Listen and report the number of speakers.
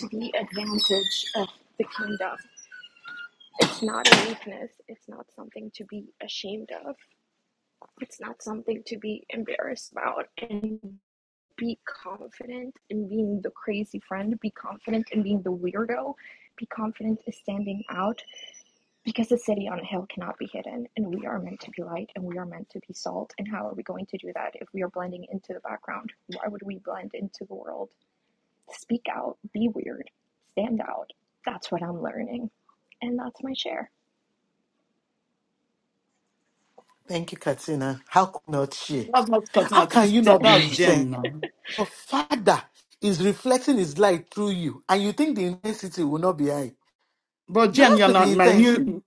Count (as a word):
three